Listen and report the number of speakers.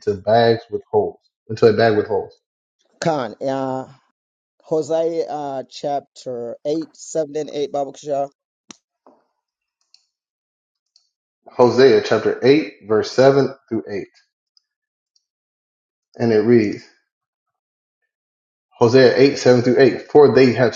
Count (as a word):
two